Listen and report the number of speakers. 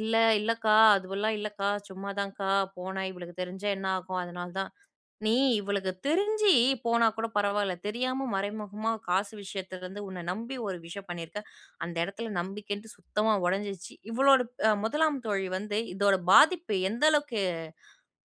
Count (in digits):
1